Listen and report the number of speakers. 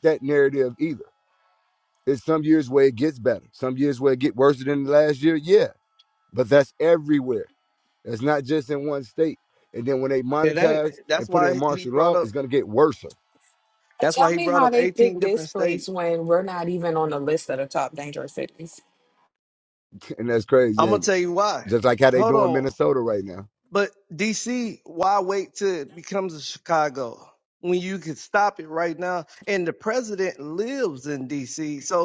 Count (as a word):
three